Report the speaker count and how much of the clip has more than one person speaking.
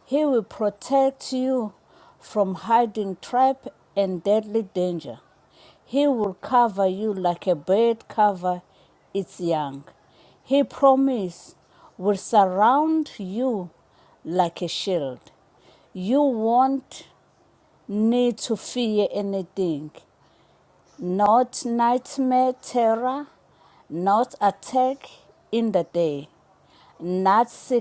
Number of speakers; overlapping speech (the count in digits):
1, no overlap